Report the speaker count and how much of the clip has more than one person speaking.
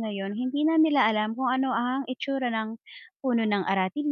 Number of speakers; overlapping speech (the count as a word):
one, no overlap